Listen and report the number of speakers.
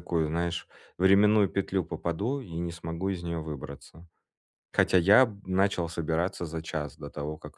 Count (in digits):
1